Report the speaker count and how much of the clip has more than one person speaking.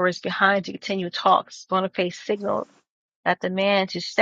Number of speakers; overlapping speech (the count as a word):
one, no overlap